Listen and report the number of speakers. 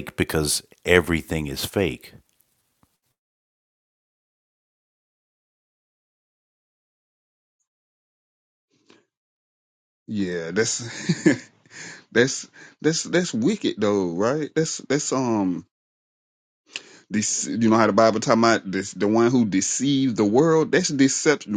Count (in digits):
2